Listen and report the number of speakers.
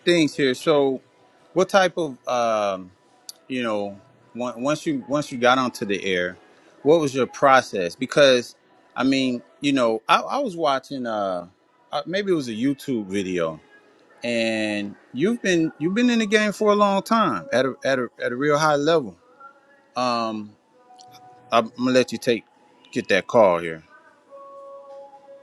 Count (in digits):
1